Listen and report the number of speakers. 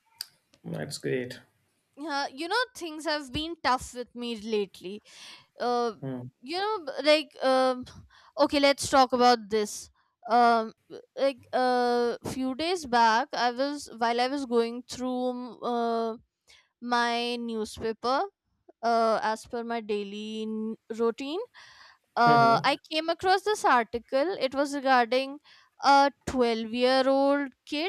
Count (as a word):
two